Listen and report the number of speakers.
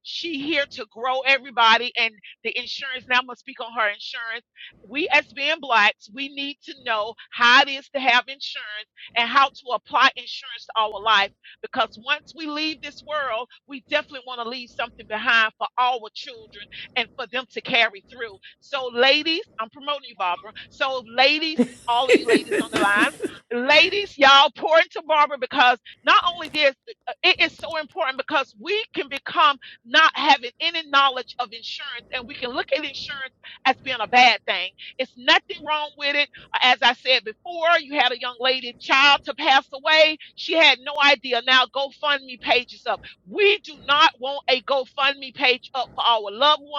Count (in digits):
1